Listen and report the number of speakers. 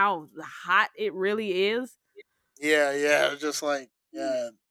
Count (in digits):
2